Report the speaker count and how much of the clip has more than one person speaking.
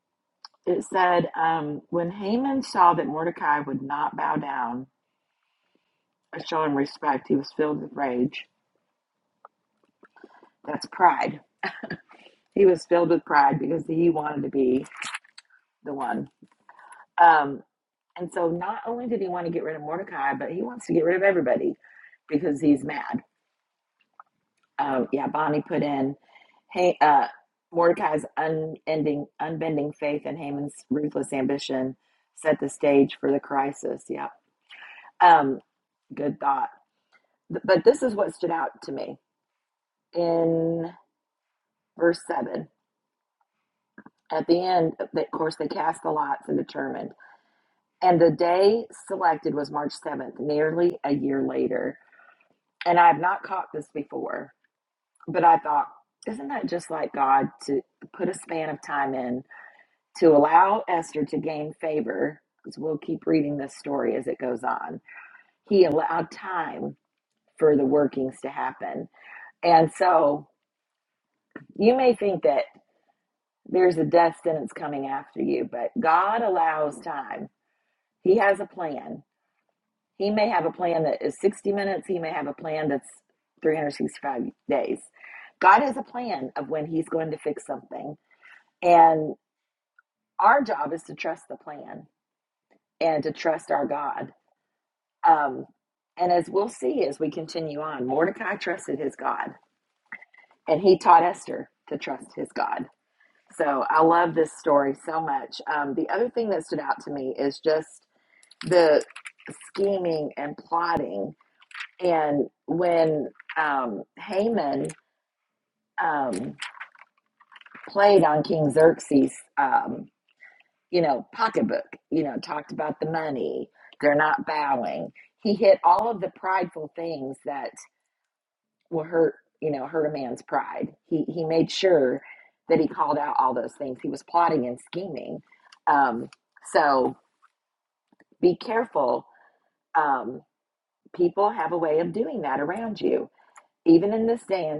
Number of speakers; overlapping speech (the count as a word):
one, no overlap